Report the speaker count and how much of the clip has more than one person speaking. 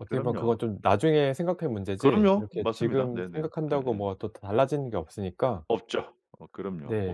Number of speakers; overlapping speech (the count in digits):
2, about 38%